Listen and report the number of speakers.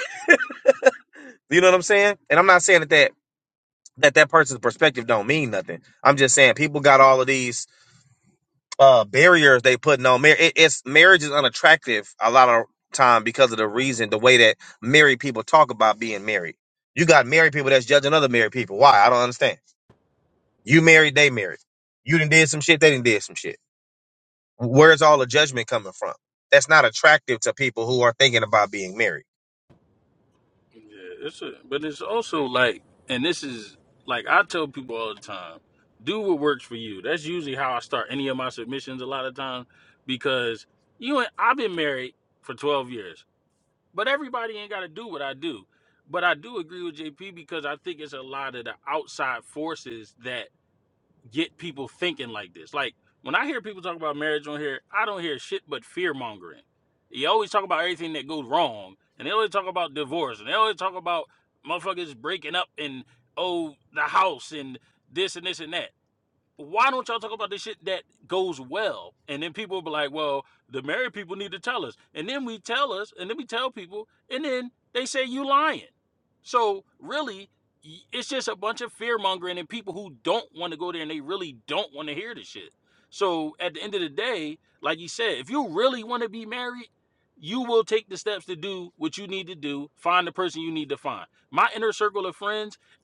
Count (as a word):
two